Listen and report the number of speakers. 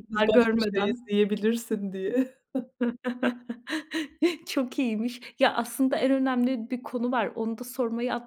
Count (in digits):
2